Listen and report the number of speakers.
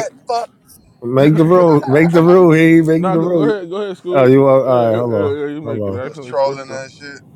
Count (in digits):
3